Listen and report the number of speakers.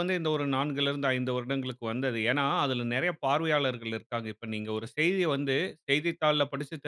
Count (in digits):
1